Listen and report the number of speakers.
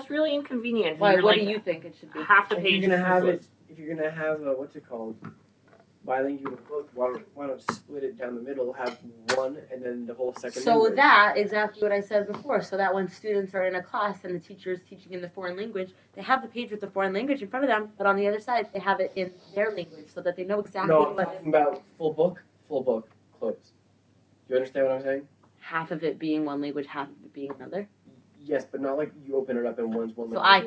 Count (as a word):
three